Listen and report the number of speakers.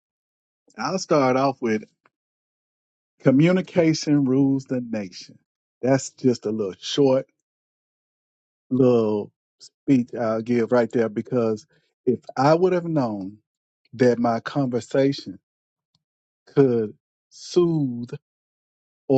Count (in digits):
1